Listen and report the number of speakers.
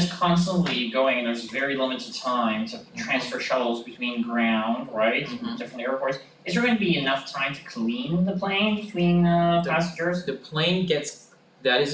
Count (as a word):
two